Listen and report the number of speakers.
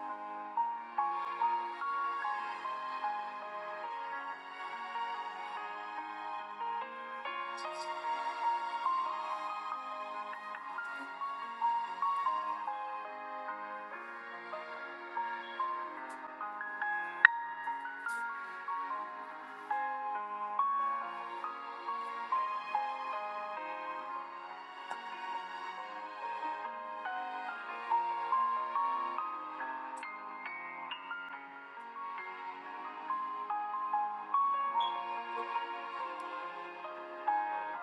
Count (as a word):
zero